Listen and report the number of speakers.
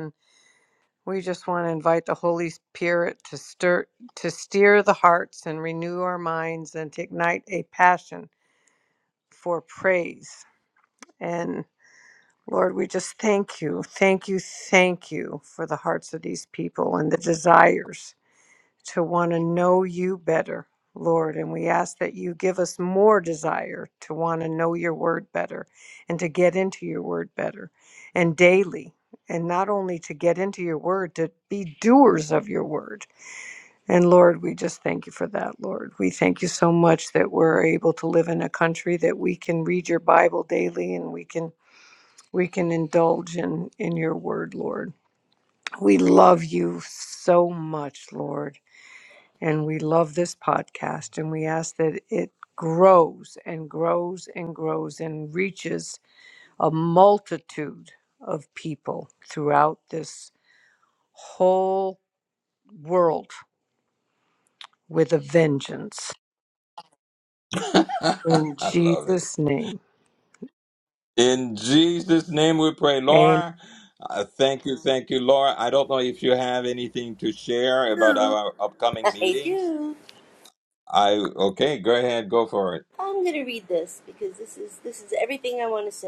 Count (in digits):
3